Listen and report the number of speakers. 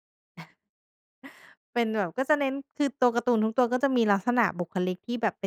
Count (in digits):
1